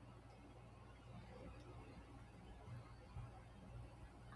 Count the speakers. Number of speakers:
0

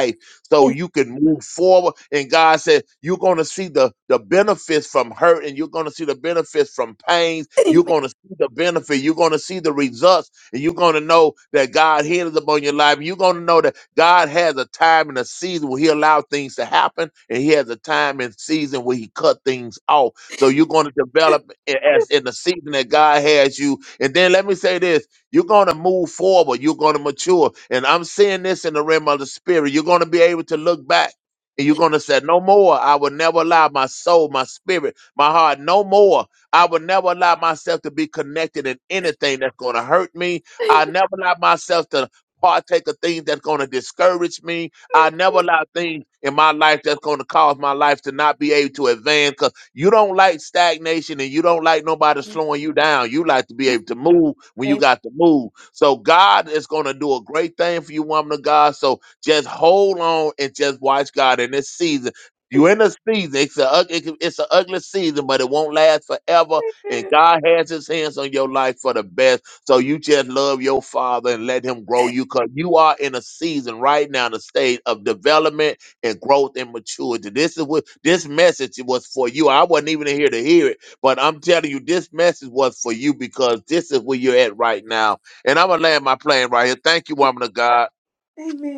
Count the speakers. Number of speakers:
2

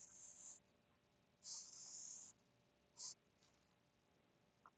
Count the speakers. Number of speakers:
0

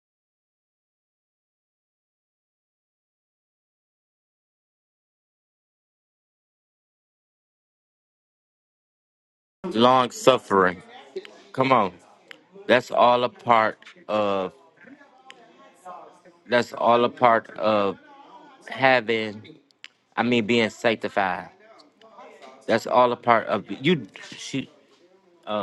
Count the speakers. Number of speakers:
1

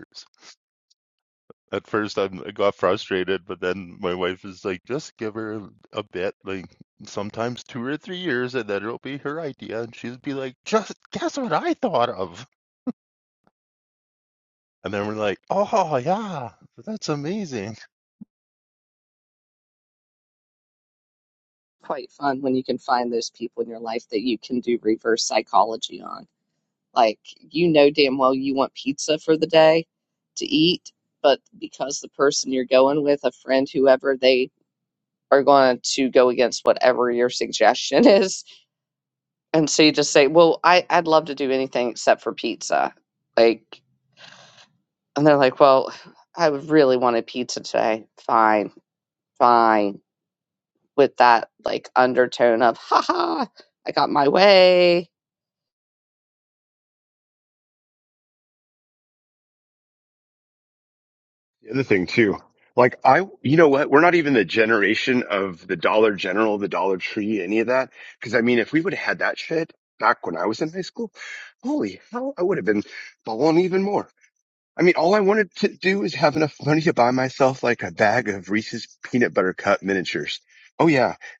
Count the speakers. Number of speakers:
3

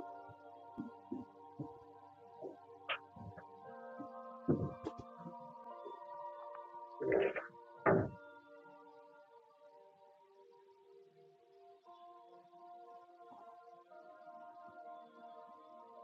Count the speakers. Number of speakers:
0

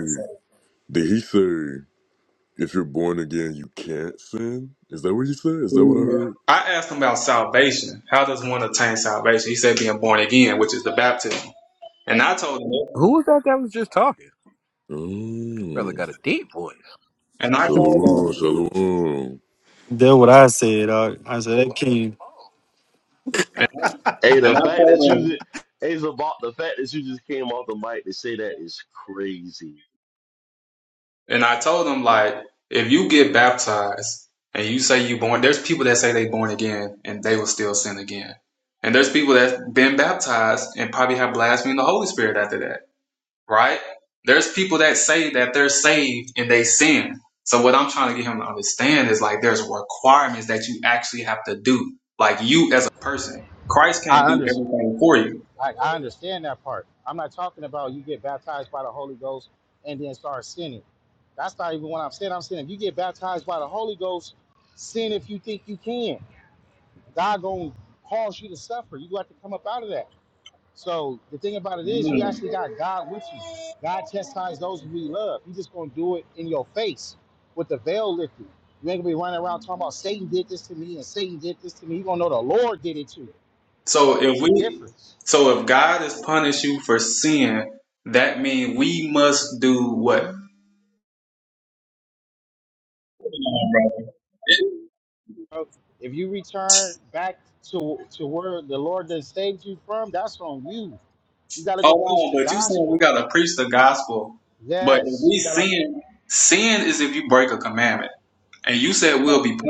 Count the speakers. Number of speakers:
6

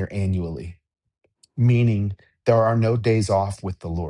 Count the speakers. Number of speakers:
1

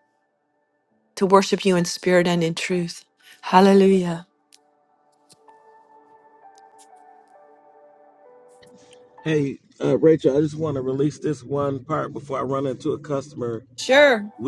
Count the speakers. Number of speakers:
2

